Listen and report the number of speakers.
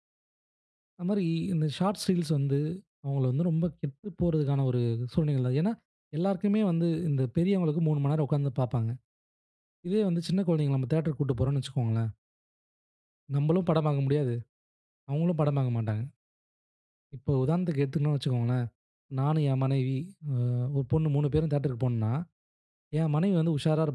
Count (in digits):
1